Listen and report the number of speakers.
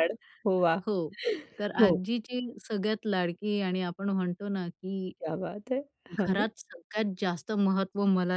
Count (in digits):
2